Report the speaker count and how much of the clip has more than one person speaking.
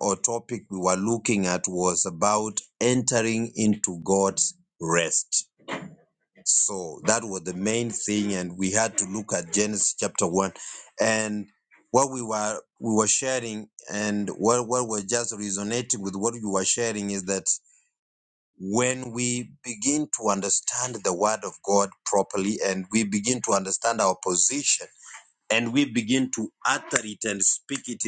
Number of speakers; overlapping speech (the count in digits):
1, no overlap